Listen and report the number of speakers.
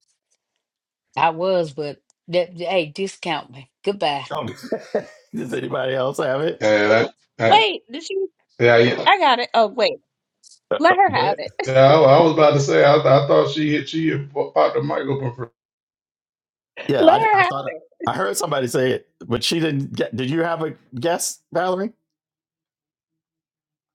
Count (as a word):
four